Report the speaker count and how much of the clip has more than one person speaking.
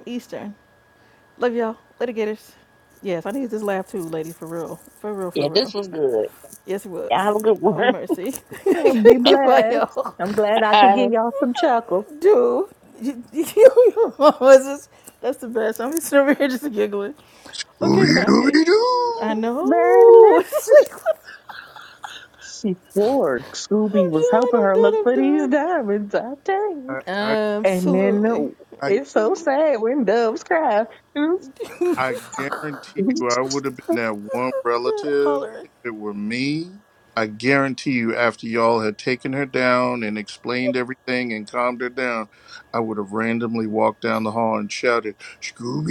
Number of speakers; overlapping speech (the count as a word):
four, about 12%